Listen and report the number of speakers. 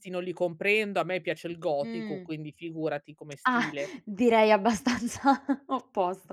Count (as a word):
two